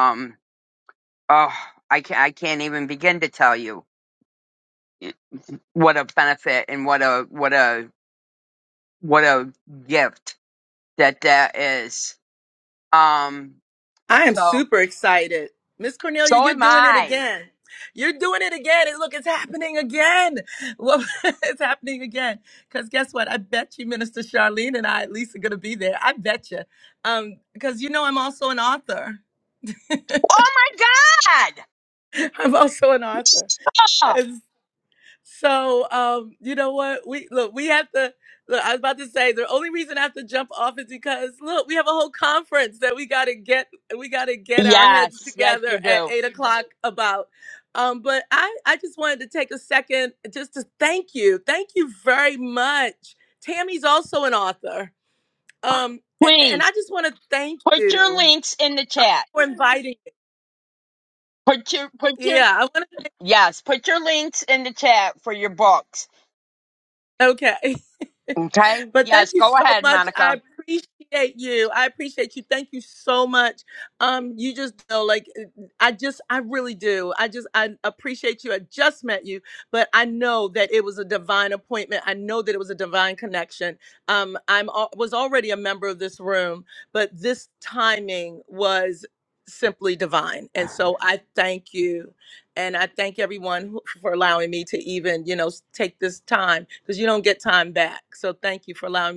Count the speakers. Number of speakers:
2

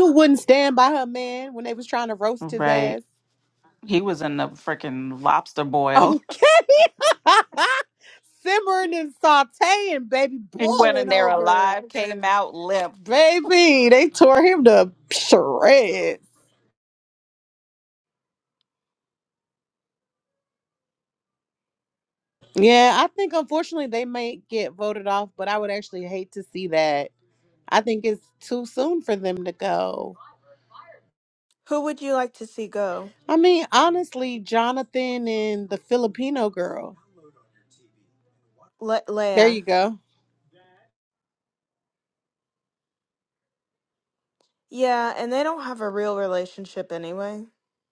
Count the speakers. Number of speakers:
3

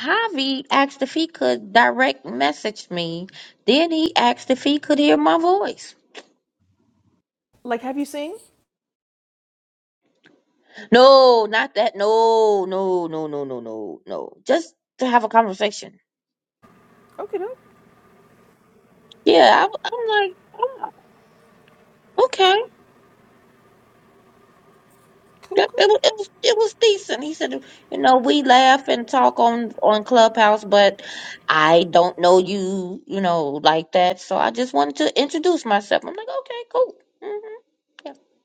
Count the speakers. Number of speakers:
2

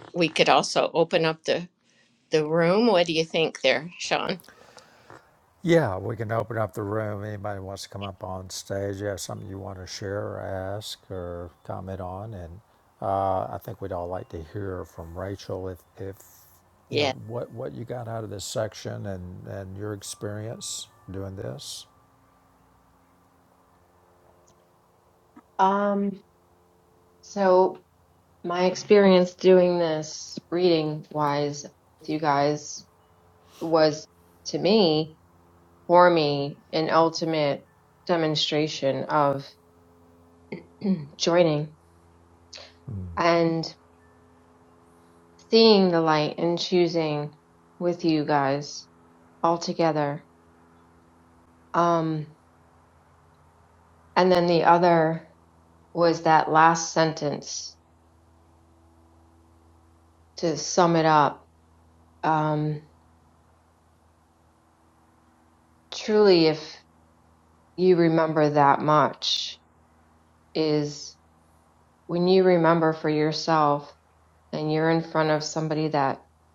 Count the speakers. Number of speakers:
3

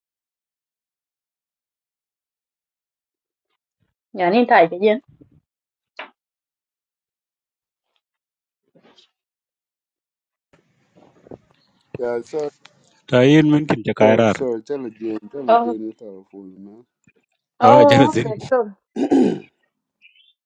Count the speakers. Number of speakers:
3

